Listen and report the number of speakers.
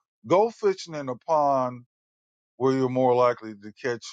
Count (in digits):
1